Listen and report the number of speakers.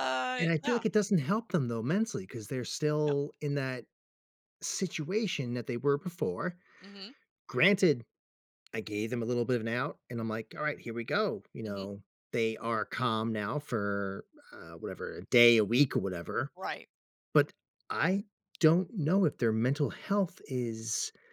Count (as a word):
two